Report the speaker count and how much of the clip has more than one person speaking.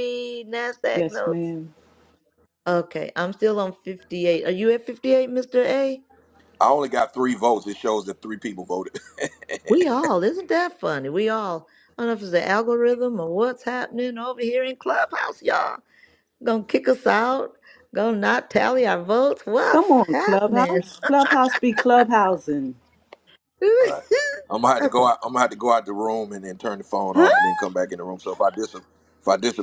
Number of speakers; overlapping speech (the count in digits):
3, about 7%